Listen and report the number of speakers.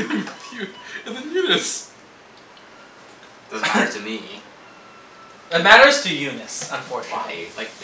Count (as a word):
three